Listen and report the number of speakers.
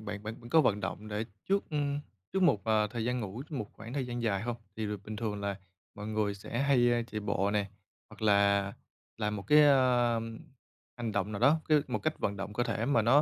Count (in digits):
1